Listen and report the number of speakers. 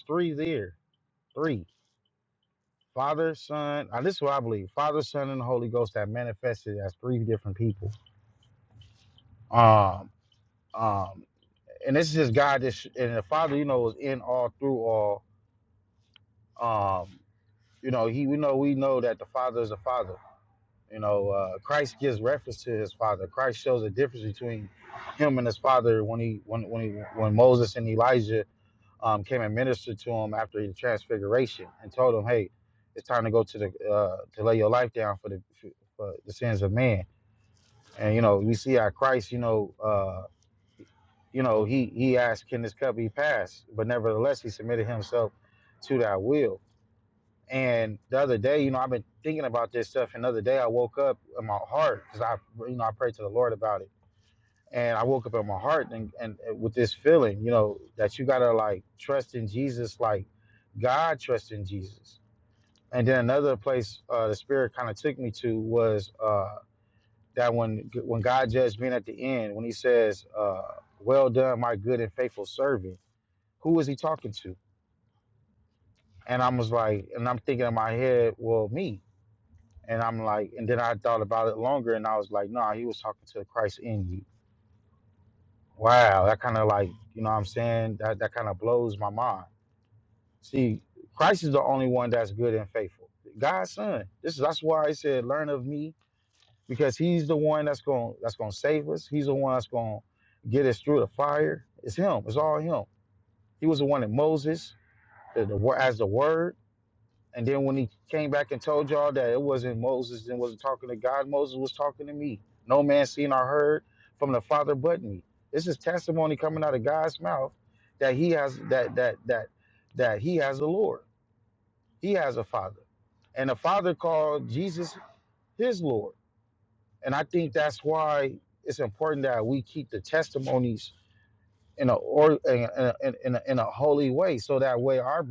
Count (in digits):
1